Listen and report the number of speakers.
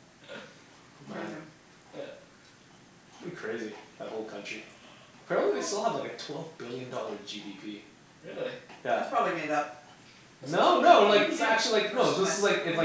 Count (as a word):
three